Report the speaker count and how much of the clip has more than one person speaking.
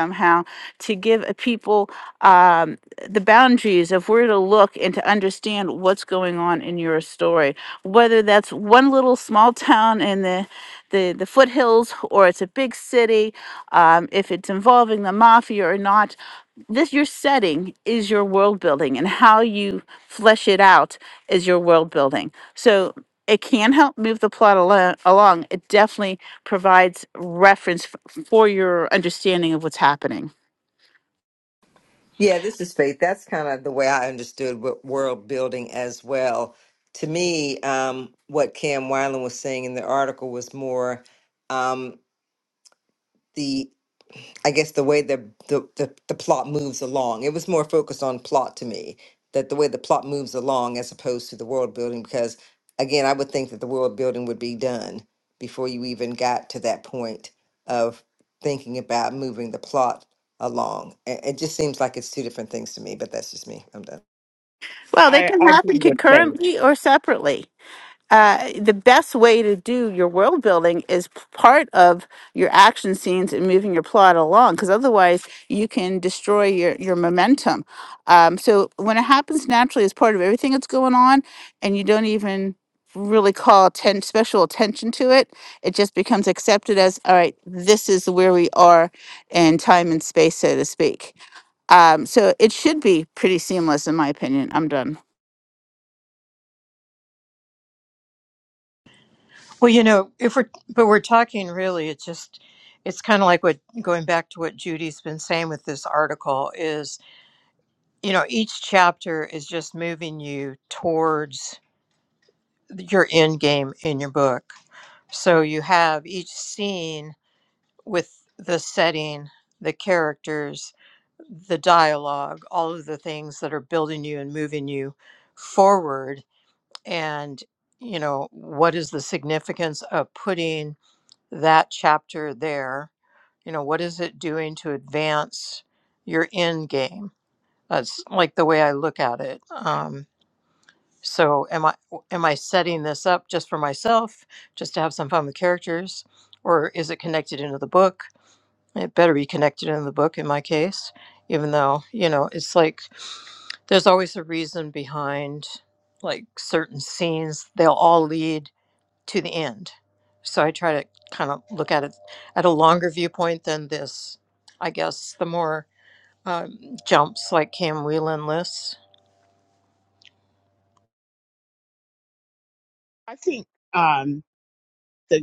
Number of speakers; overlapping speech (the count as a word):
four, about 1%